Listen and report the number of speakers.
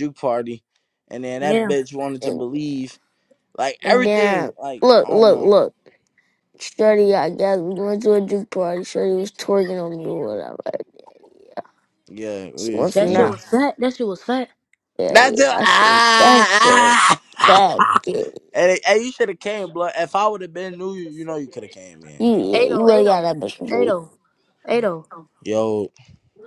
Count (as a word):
three